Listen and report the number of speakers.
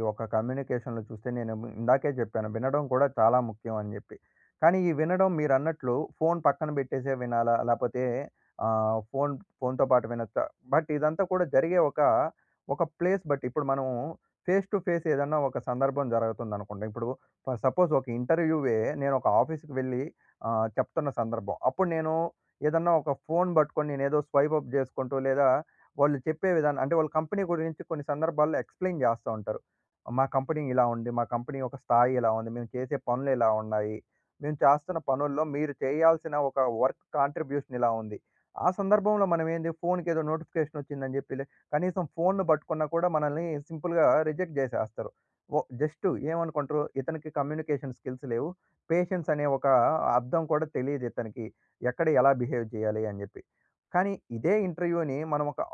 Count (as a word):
one